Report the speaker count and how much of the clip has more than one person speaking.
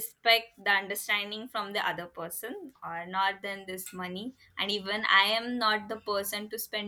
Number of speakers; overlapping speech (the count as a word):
one, no overlap